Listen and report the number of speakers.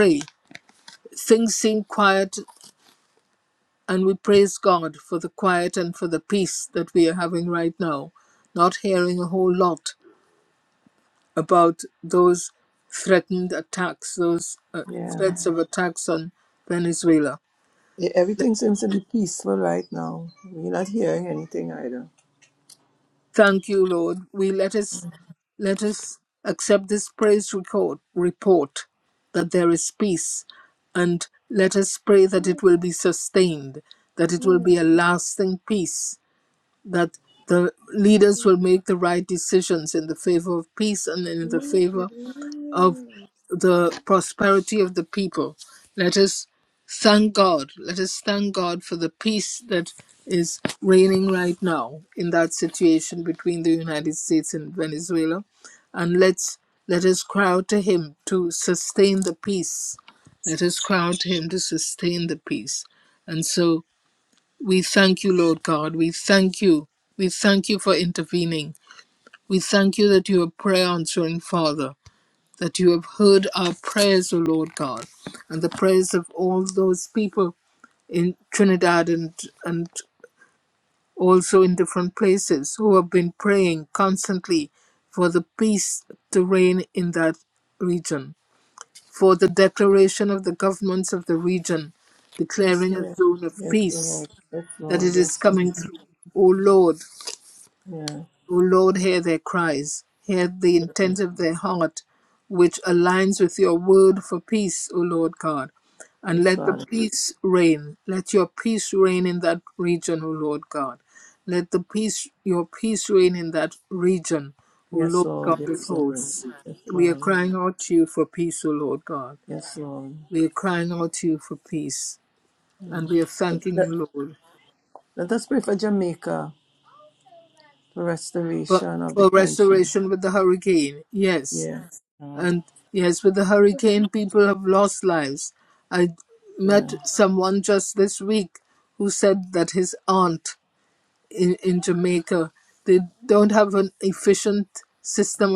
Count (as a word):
two